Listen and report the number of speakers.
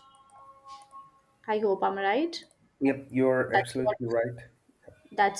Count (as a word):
two